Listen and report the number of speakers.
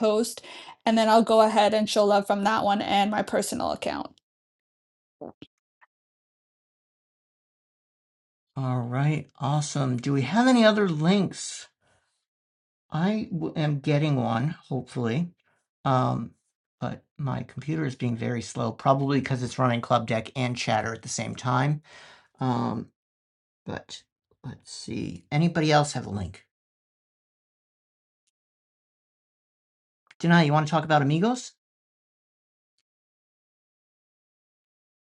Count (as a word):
two